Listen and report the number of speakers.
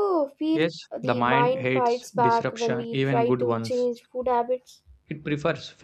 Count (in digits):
2